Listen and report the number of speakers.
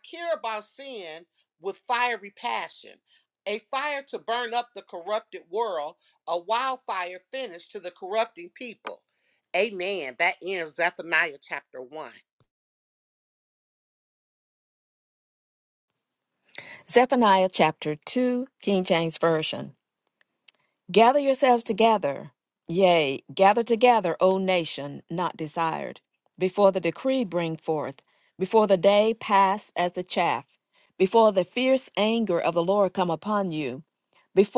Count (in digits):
2